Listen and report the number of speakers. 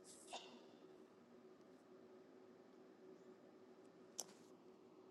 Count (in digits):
0